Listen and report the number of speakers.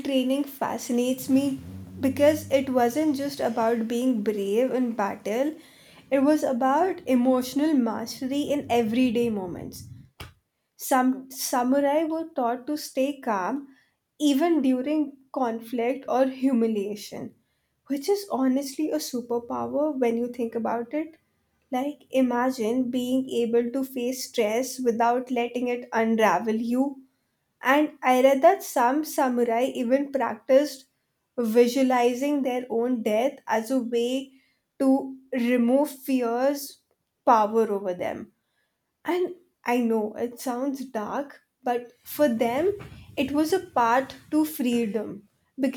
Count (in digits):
1